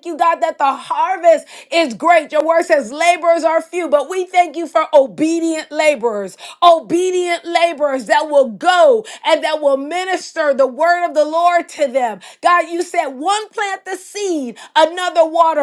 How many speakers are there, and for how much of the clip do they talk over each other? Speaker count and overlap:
one, no overlap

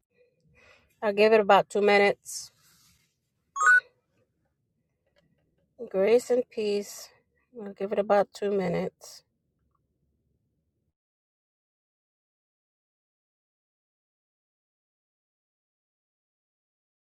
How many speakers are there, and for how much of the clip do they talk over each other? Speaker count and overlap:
one, no overlap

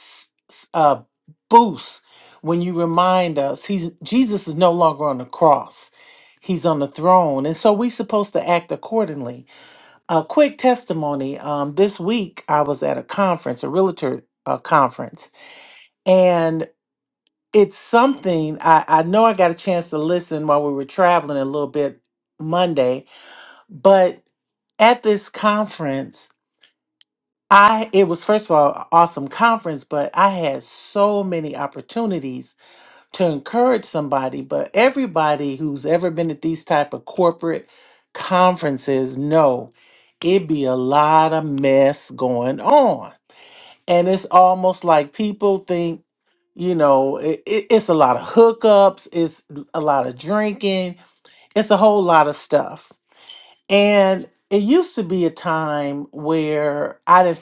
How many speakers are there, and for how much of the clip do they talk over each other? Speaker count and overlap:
one, no overlap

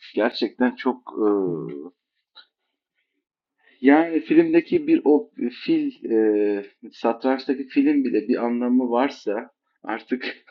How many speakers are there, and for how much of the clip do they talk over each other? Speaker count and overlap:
one, no overlap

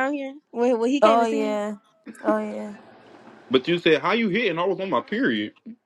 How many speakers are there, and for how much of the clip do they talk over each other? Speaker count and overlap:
three, about 9%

